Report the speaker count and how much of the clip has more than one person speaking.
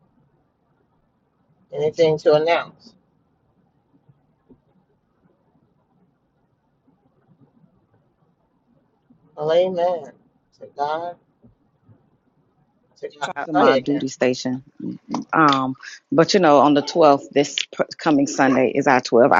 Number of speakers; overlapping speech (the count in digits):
2, about 4%